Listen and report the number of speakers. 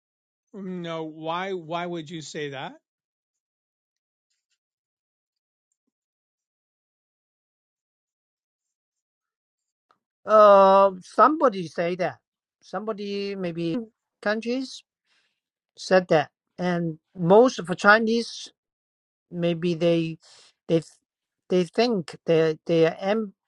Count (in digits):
2